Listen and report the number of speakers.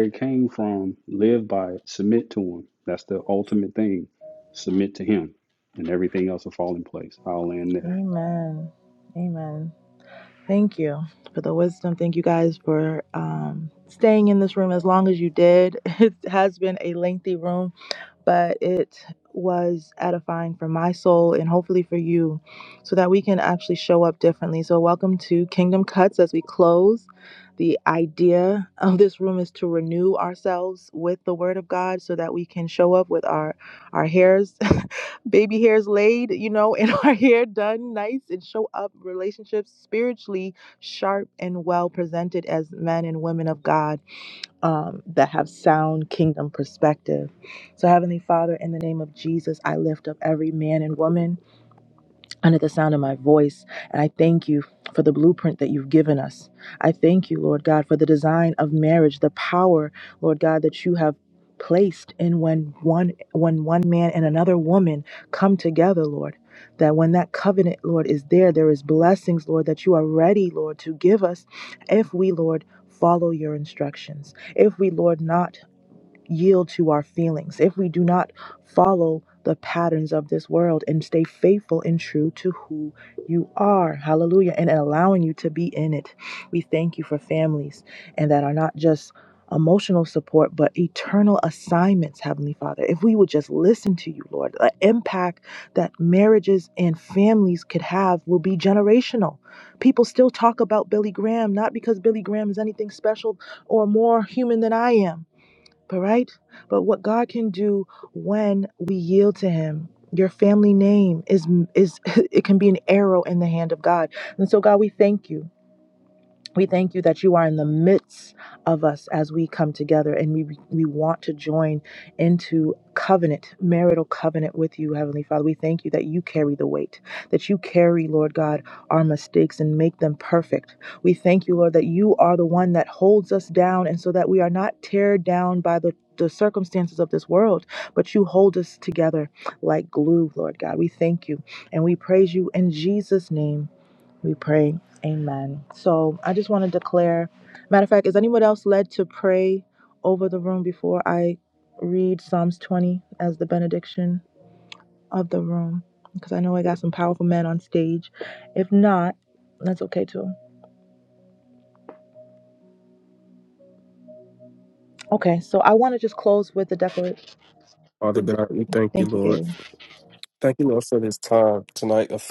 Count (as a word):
three